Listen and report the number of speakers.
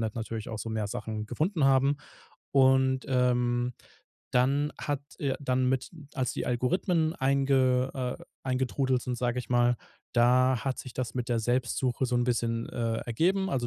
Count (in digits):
1